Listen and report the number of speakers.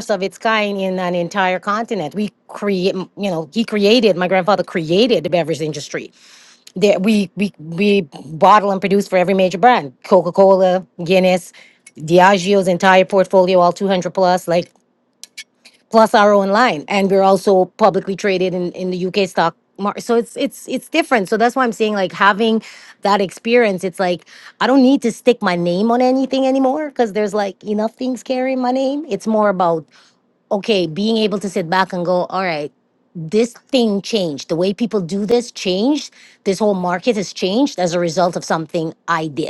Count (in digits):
1